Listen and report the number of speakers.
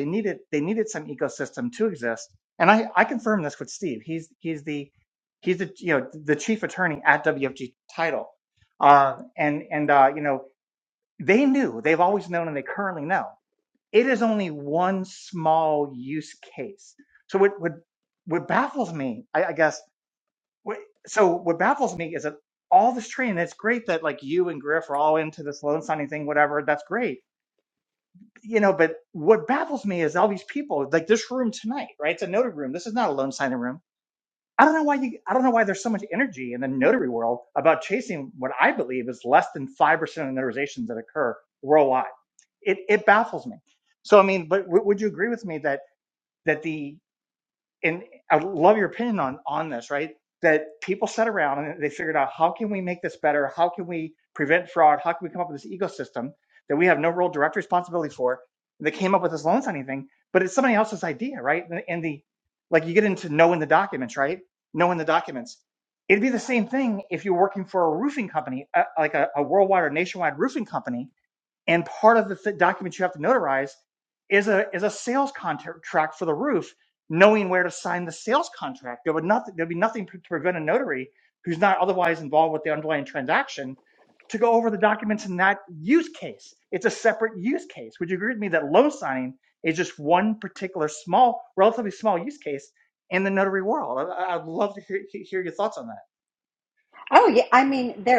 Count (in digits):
2